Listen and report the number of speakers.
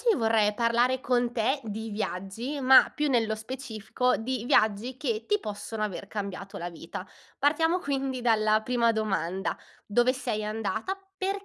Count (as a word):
one